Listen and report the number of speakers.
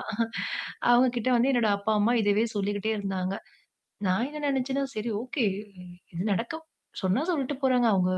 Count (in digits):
1